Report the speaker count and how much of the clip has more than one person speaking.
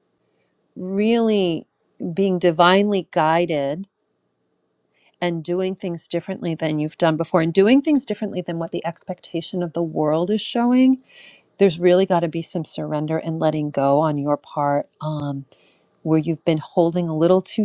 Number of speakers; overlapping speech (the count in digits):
1, no overlap